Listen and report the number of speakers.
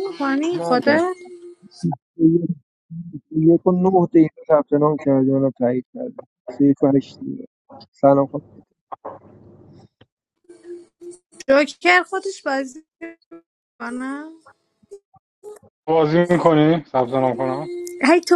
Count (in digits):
3